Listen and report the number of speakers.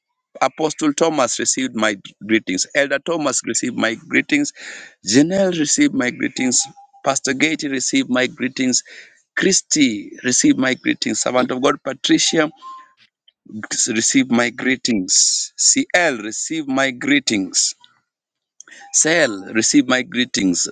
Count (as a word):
one